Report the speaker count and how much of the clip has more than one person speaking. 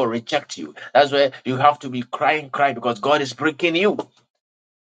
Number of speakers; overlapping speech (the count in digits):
1, no overlap